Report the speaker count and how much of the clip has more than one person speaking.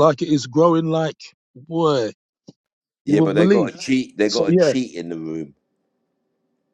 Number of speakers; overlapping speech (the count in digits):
2, about 15%